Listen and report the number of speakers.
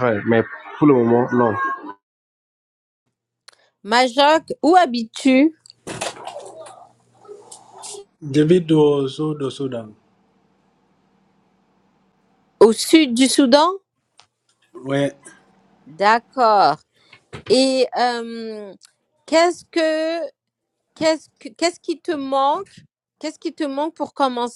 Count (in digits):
3